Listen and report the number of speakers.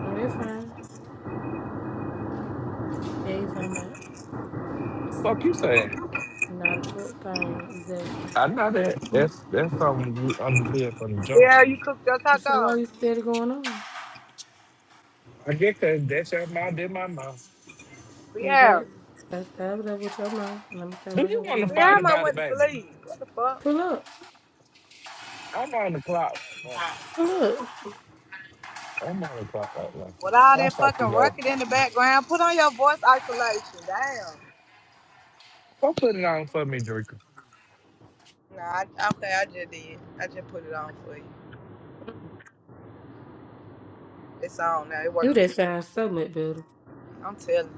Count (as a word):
three